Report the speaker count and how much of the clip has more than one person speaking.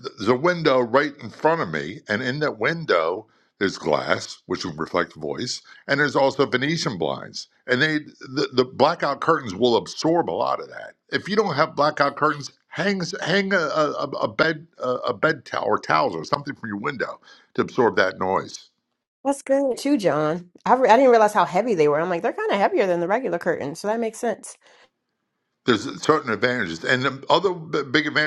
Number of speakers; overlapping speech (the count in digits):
2, no overlap